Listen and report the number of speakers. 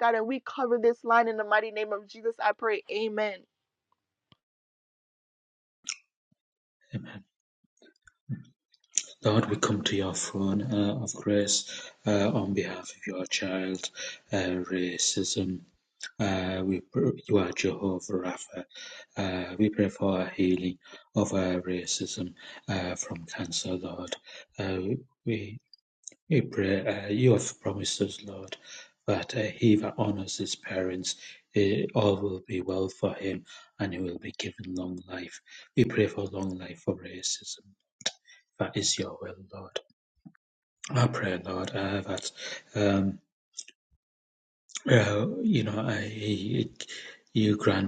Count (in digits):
2